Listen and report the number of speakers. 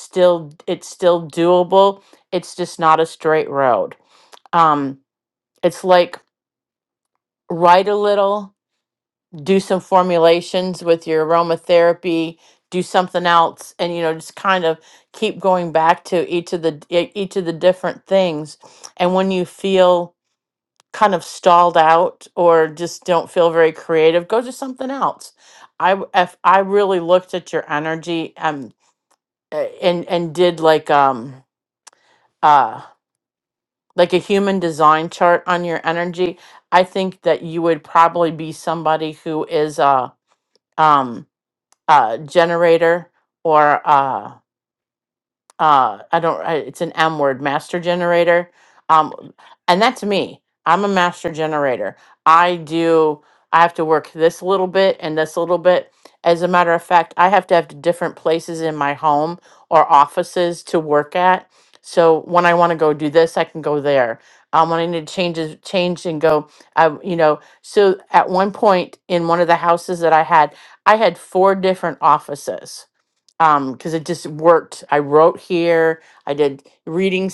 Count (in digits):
1